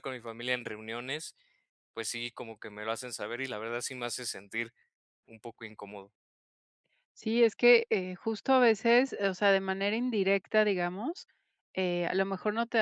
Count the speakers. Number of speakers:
two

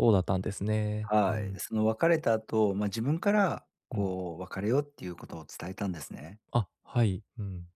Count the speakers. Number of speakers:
two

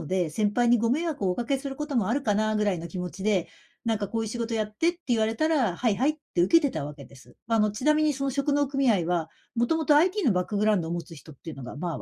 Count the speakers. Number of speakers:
one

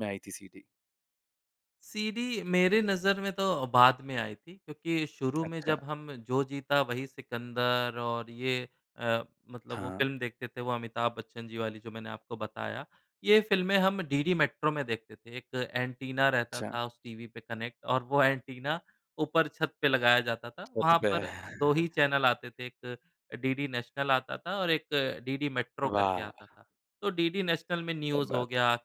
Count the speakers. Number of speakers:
two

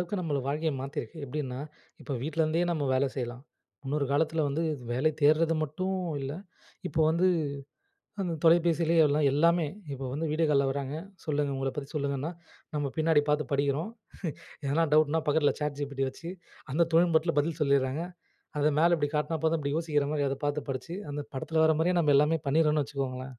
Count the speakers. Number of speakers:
one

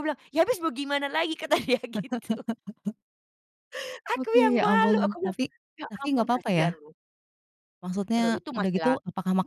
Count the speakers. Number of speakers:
two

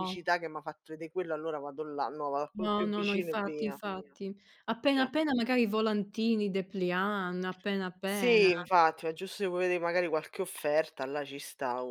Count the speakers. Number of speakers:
two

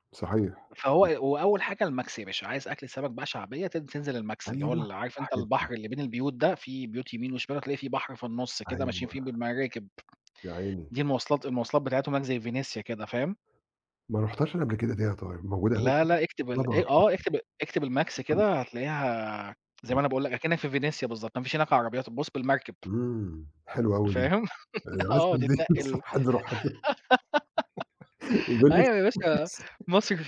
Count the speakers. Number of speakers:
two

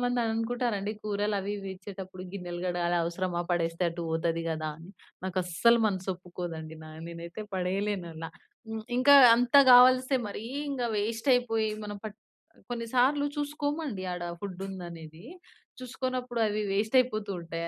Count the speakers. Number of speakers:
one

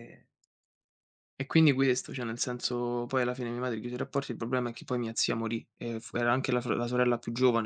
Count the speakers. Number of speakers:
one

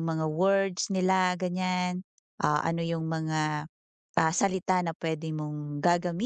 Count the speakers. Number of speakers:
one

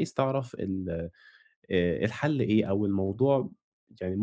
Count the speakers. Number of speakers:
one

